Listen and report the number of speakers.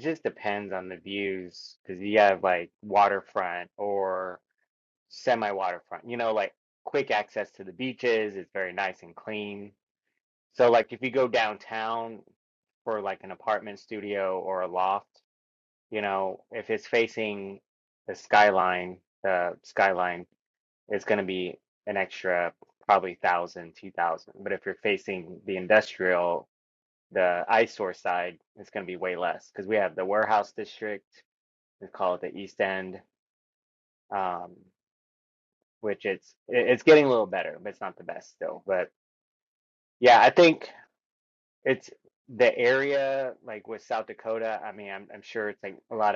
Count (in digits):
1